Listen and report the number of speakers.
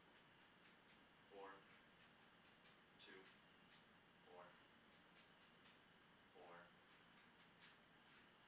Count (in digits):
1